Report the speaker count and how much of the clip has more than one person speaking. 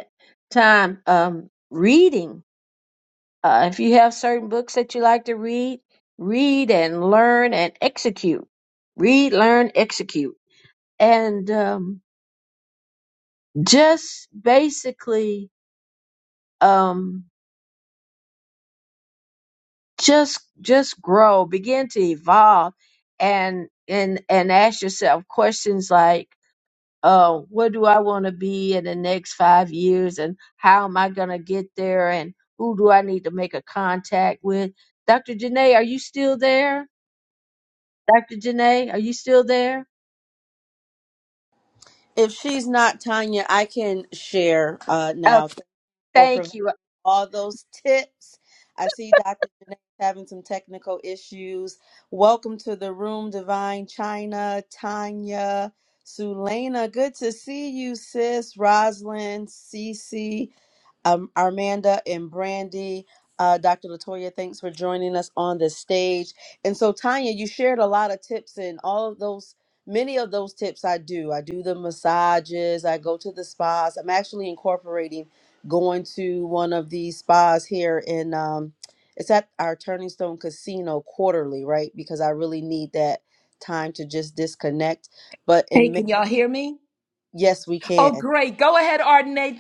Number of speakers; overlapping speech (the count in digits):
3, about 1%